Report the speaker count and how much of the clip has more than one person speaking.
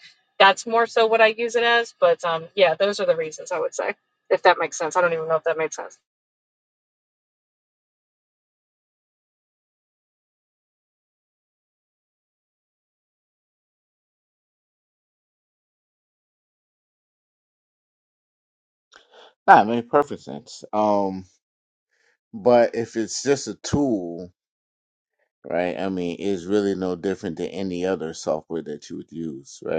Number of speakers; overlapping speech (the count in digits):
2, no overlap